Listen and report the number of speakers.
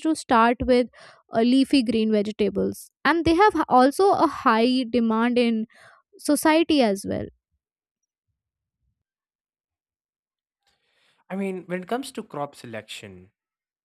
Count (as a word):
two